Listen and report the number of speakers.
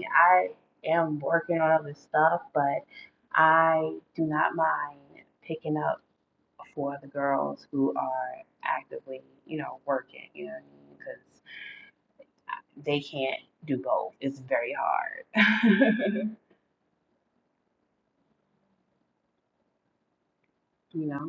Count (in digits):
1